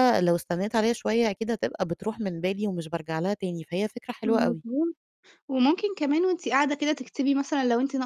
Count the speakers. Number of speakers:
two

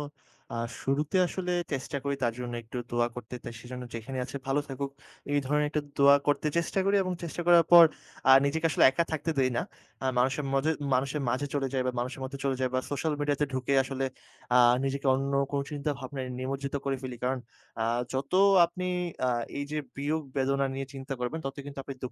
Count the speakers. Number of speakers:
one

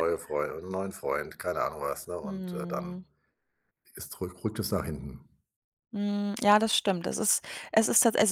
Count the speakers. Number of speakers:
two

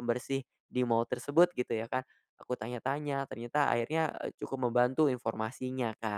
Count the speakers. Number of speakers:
one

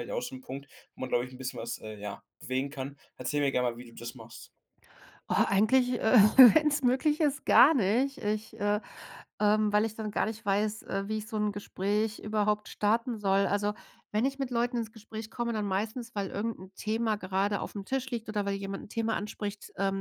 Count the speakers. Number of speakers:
two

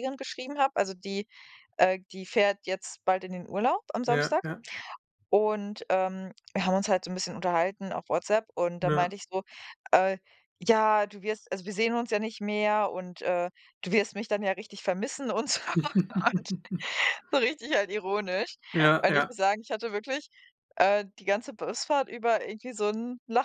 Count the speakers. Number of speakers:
two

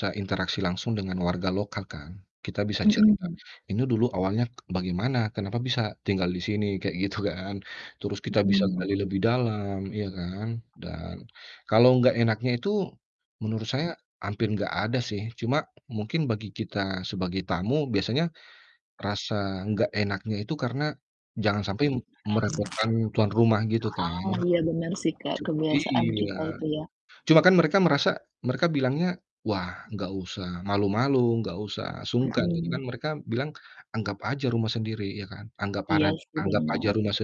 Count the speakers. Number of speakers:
two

